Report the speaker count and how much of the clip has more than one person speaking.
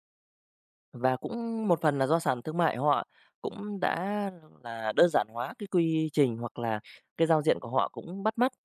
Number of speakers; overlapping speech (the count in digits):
1, no overlap